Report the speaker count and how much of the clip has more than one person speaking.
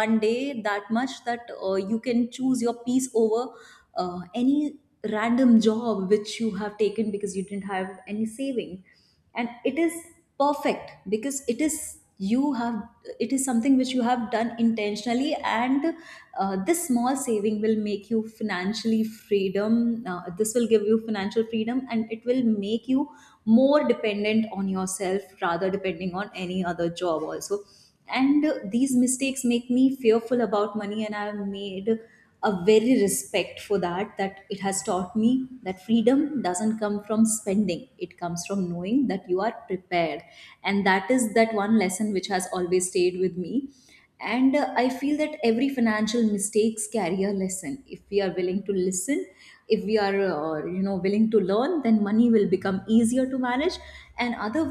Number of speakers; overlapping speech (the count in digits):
1, no overlap